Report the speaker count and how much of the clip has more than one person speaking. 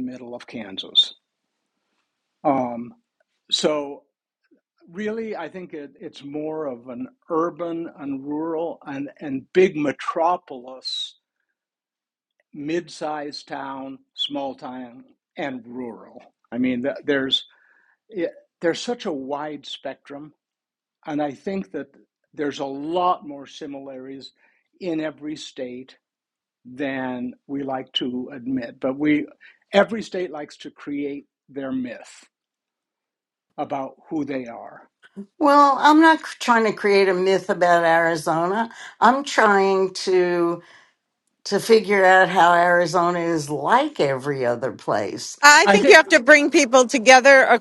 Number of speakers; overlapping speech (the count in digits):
3, about 1%